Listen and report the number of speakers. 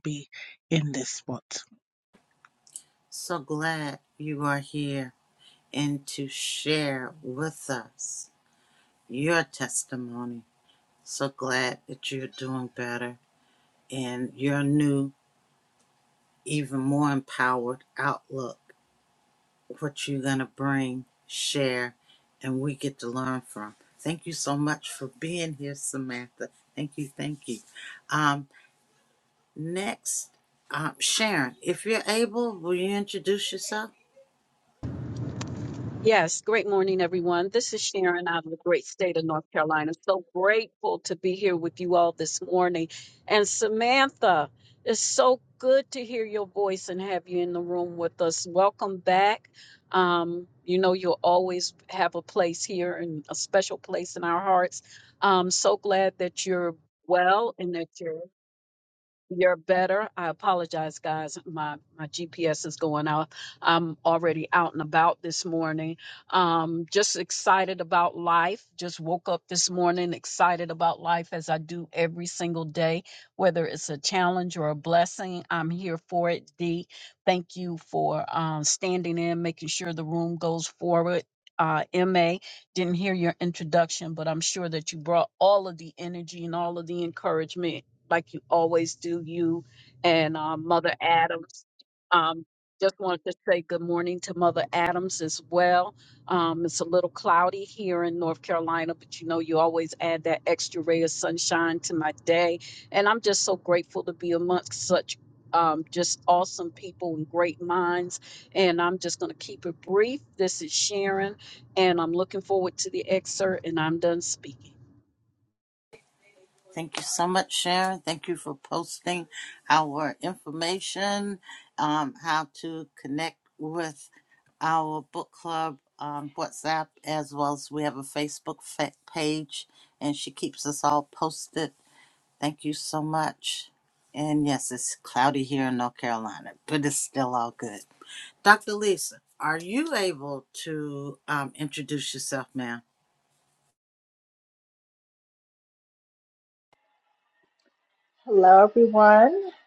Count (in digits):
4